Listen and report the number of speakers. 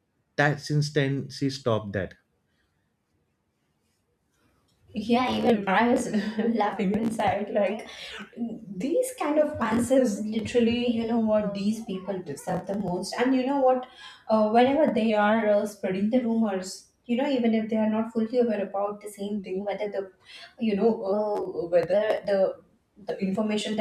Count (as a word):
two